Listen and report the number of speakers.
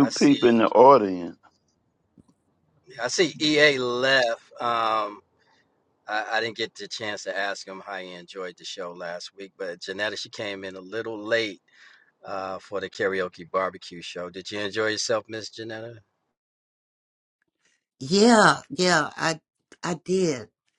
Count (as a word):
three